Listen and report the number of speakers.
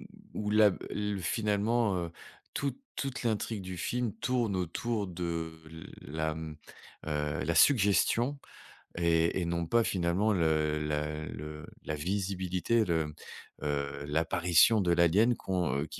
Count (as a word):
one